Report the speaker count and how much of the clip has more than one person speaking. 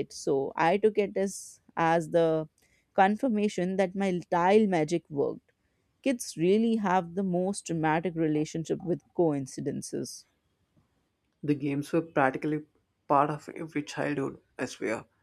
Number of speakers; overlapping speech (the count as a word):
two, no overlap